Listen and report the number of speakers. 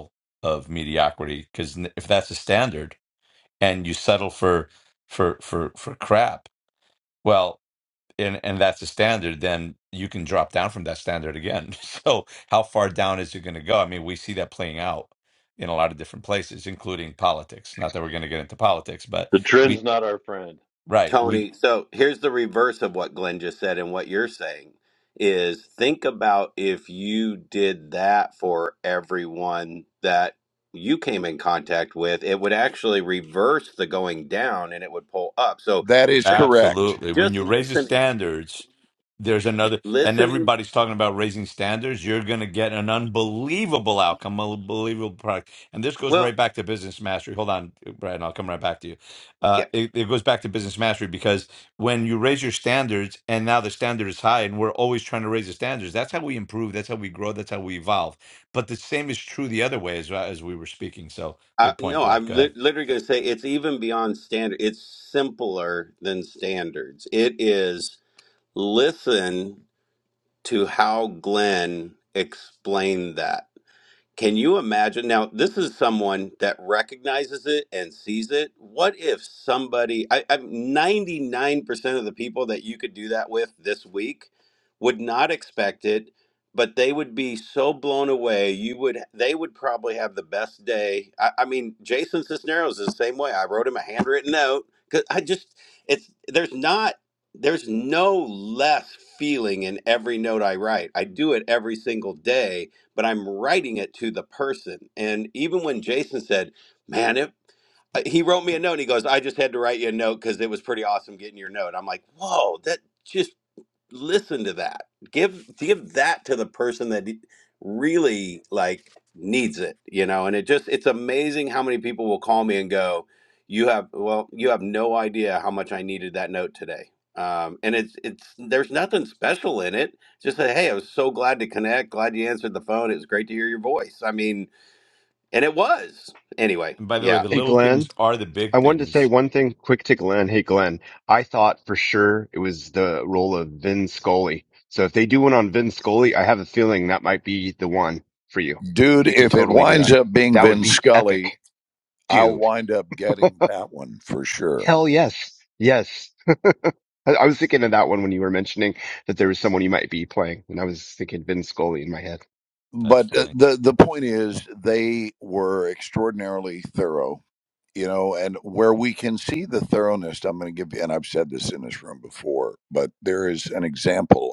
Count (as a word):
five